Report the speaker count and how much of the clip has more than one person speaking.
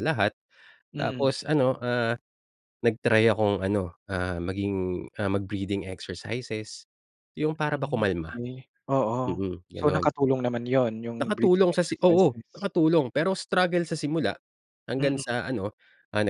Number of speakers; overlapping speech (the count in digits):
2, about 14%